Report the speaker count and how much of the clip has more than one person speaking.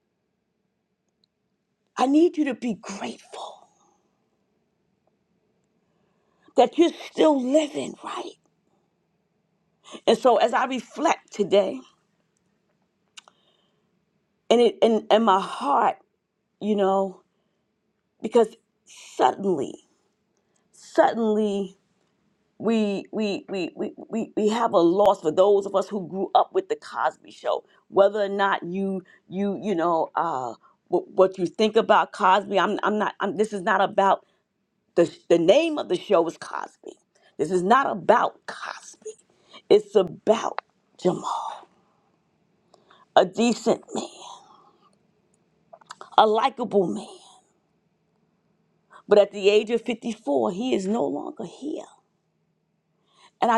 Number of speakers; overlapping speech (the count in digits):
1, no overlap